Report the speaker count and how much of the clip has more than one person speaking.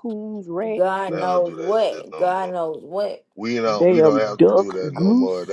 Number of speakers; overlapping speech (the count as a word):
three, about 60%